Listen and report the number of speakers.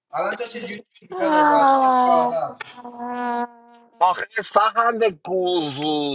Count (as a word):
three